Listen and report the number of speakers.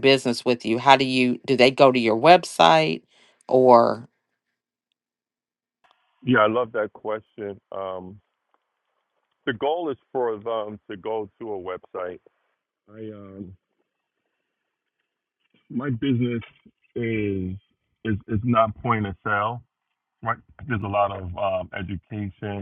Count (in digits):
2